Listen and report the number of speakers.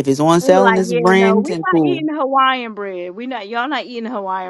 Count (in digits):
2